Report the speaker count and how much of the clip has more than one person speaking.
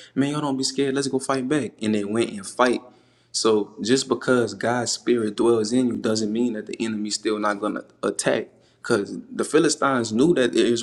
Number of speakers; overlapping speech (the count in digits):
1, no overlap